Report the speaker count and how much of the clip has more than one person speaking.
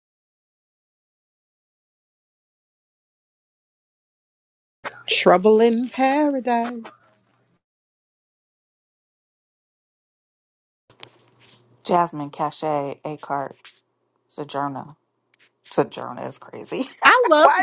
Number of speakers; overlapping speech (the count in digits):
2, about 1%